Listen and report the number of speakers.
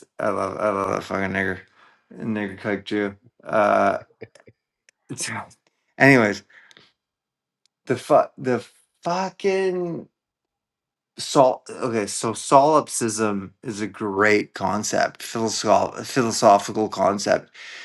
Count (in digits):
1